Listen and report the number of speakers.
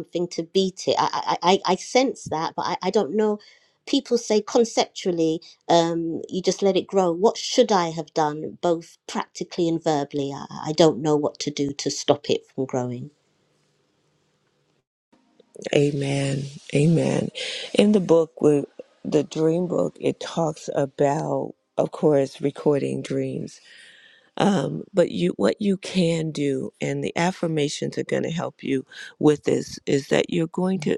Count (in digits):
2